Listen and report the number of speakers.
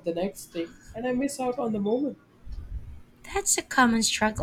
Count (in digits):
2